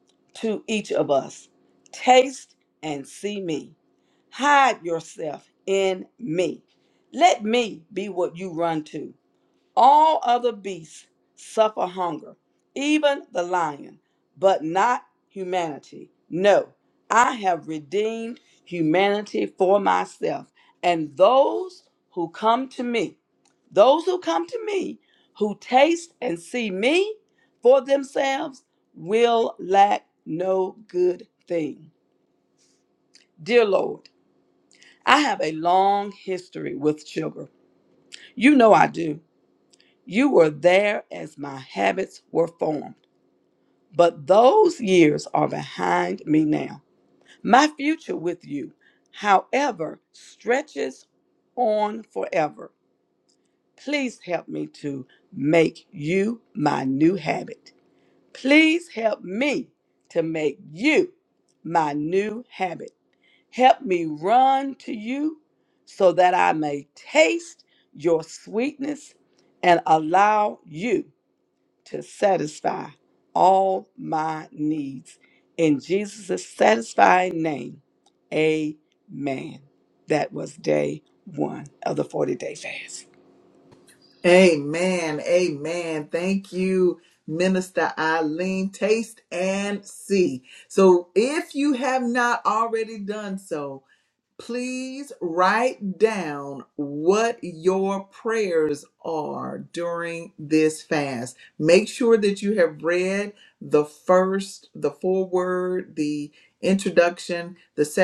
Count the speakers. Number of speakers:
two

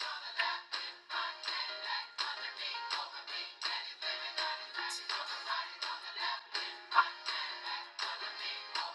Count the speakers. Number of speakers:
zero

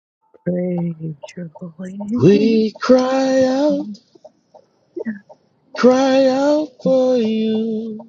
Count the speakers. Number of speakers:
two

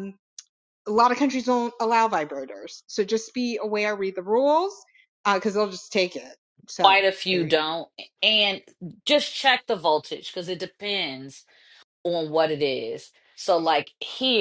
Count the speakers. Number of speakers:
two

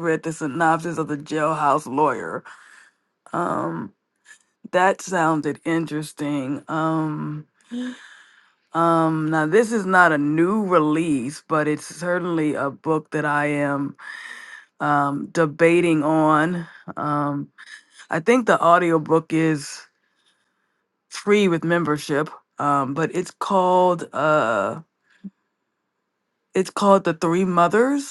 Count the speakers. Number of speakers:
one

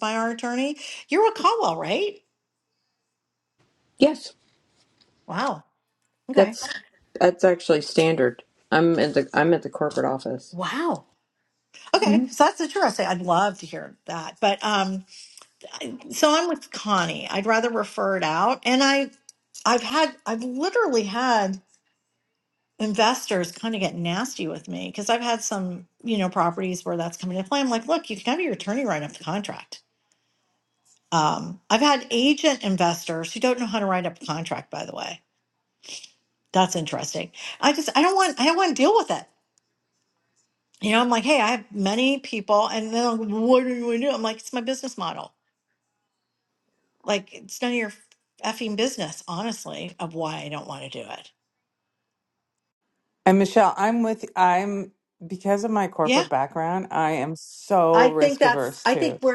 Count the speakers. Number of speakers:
three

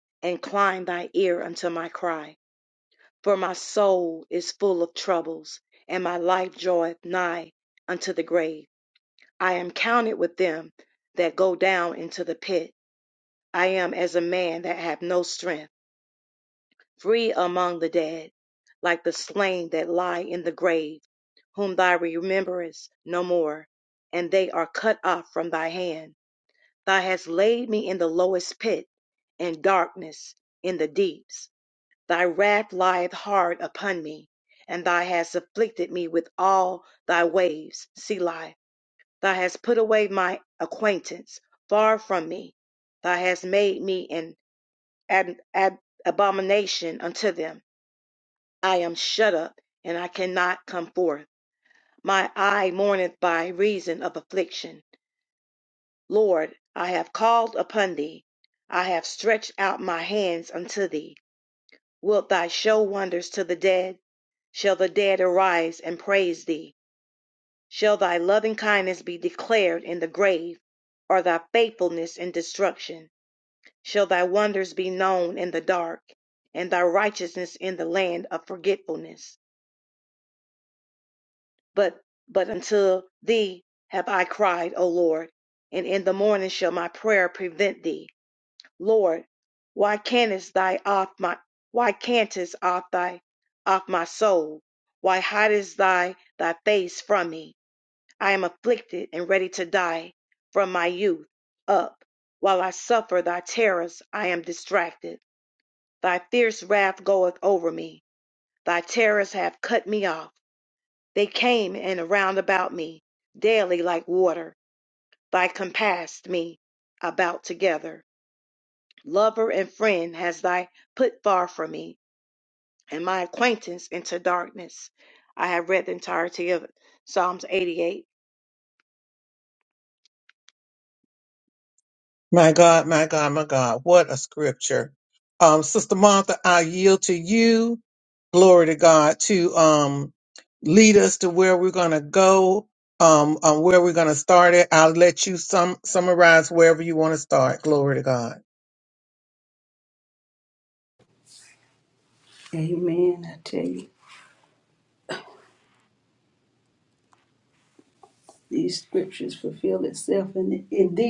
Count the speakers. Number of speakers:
three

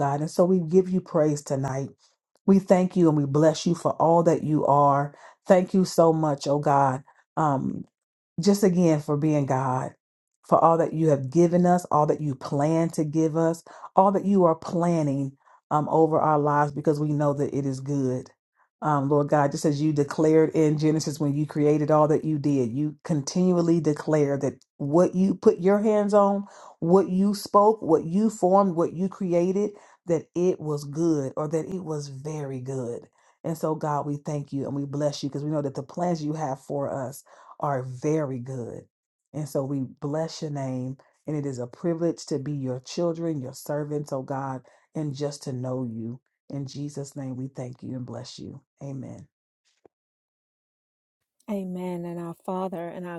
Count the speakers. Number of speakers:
two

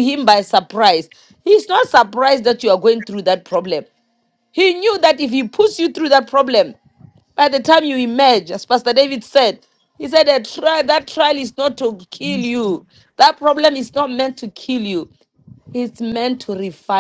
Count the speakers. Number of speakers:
one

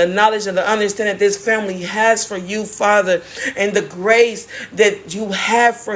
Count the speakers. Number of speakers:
one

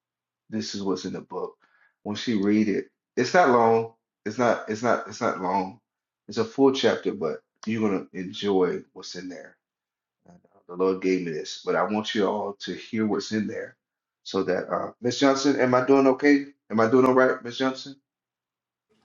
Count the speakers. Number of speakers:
one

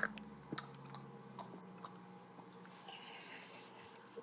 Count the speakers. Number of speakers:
zero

